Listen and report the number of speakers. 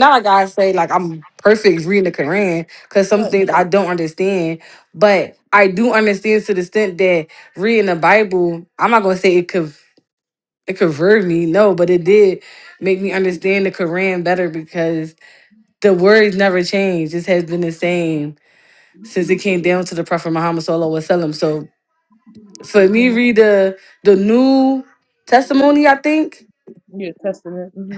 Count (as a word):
two